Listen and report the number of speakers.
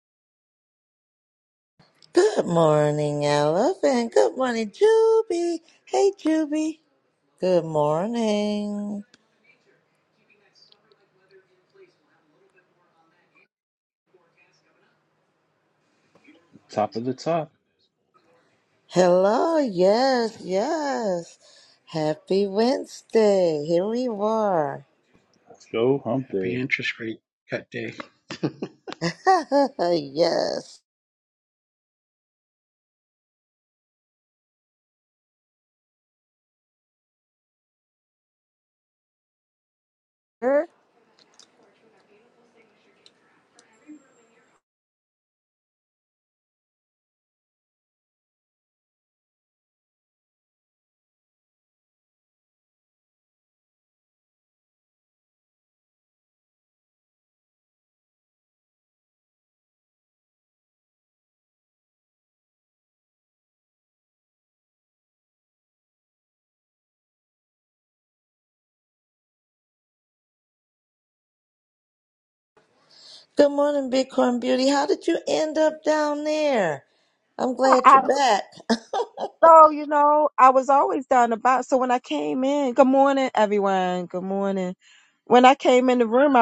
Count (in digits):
4